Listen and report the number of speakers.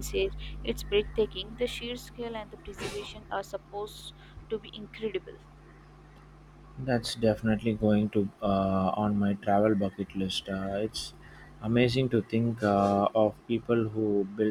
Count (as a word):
two